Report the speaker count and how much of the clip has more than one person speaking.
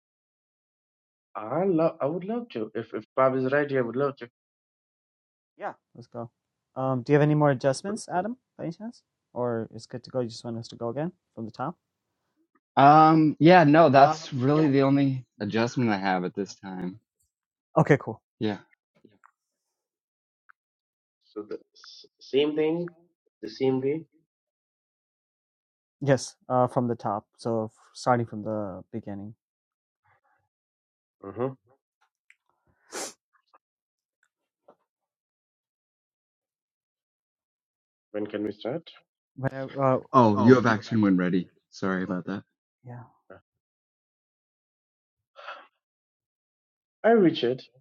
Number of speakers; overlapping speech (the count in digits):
3, no overlap